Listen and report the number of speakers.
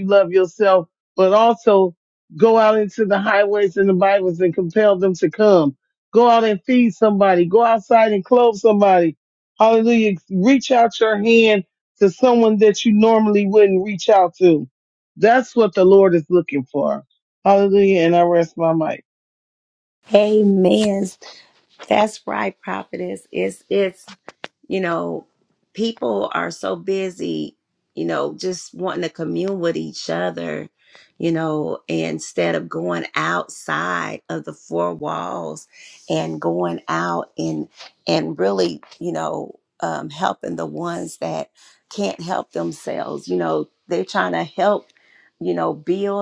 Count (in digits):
2